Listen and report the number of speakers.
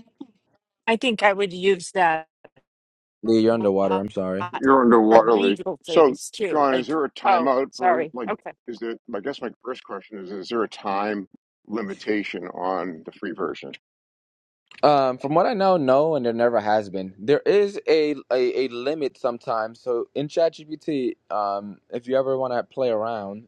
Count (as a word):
three